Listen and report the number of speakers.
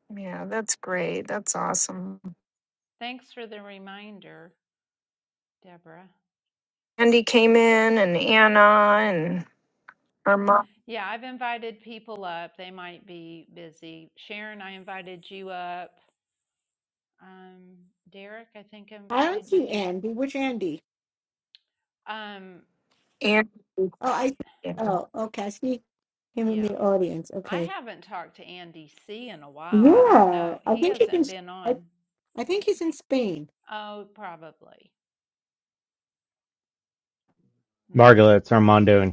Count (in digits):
4